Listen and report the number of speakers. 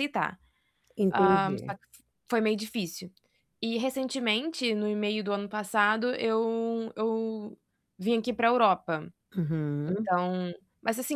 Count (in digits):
2